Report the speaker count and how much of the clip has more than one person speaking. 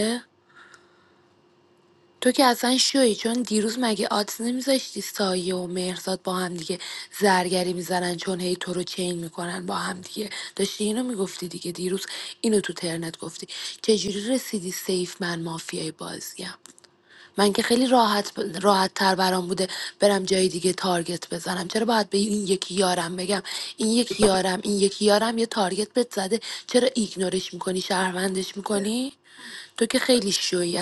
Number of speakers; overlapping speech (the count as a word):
one, no overlap